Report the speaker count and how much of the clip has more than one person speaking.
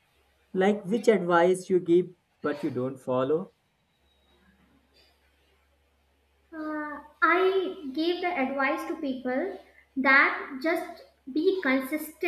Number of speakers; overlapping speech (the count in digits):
2, no overlap